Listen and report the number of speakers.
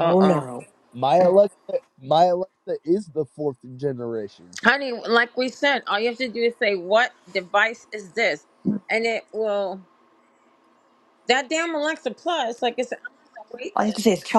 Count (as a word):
three